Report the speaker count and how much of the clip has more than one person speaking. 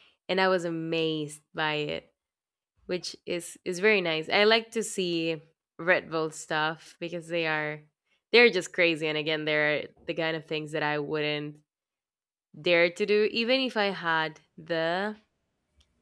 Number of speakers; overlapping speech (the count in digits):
1, no overlap